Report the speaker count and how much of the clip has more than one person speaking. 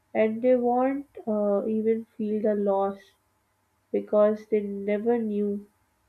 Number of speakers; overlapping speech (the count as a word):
one, no overlap